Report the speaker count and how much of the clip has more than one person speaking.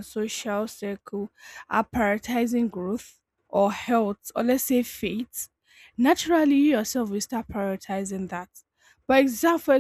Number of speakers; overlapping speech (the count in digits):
1, no overlap